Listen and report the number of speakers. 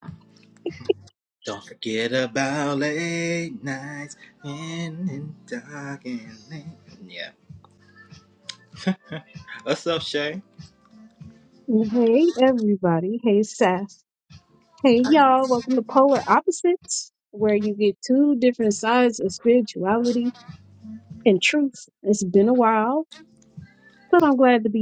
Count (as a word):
two